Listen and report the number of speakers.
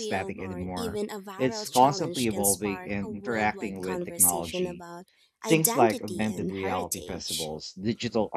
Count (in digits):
2